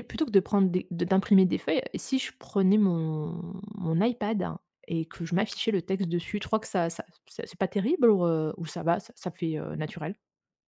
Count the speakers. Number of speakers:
one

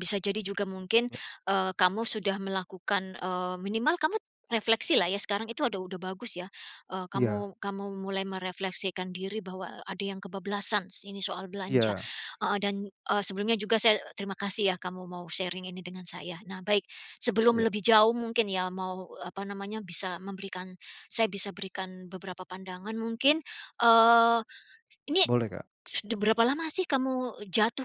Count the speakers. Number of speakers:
two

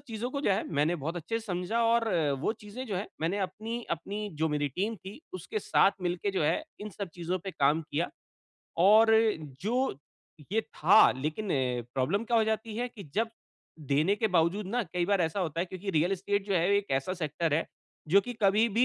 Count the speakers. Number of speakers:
one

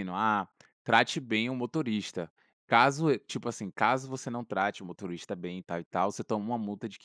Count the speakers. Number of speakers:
one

